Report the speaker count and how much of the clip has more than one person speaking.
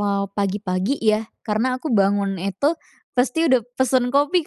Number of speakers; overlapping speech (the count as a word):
one, no overlap